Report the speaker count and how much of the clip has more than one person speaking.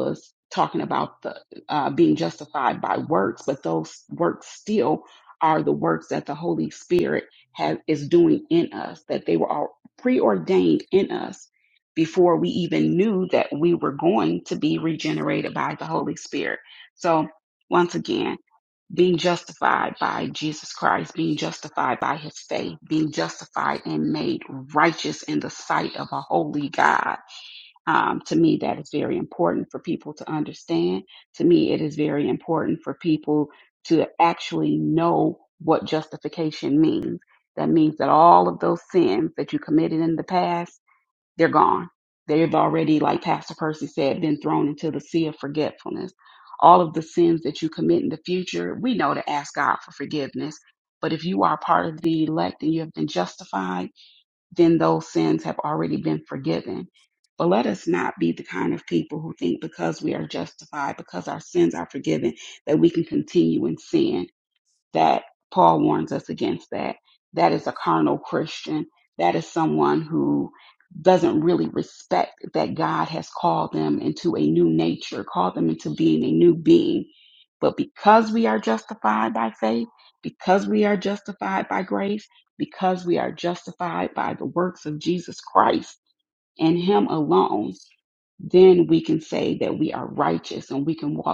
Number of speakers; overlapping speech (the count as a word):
one, no overlap